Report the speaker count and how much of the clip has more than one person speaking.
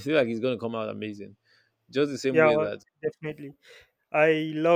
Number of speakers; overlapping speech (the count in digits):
2, about 5%